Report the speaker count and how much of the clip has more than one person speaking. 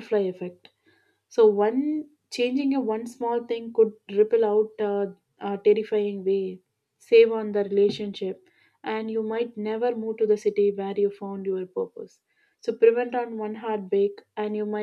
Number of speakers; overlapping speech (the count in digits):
1, no overlap